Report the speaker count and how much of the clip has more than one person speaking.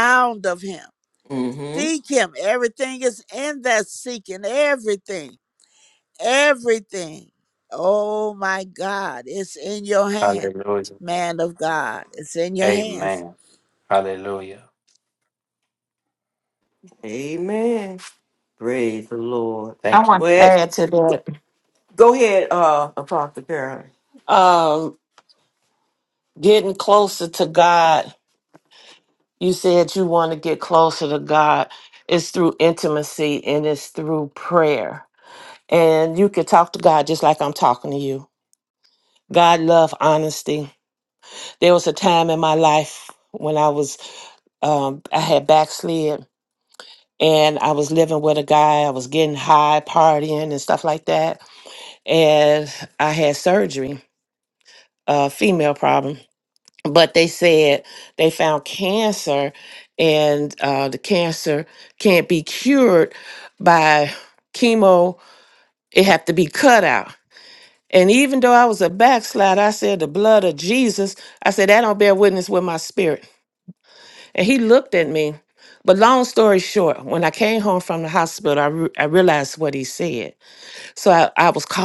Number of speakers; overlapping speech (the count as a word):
four, about 2%